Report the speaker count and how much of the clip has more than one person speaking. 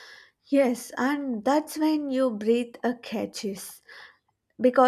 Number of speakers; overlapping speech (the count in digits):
1, no overlap